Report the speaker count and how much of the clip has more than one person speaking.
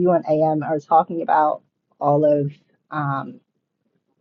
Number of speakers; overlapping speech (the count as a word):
one, no overlap